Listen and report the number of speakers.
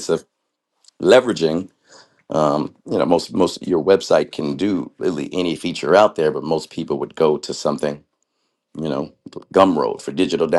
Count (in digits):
1